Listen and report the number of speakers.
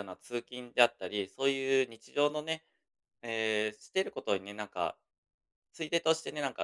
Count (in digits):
1